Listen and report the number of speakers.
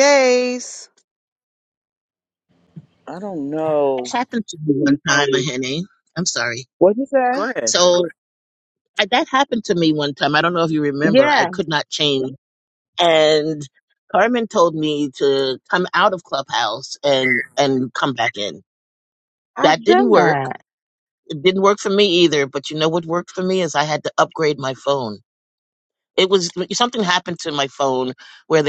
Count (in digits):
3